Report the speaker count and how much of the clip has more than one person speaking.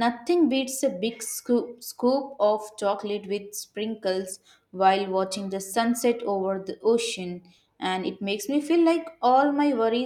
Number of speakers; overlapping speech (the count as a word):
one, no overlap